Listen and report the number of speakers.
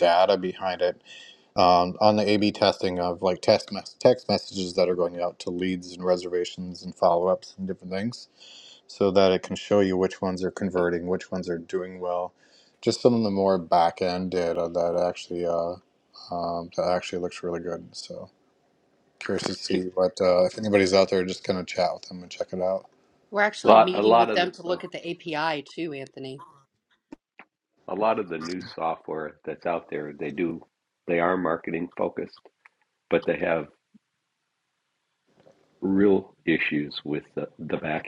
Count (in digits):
3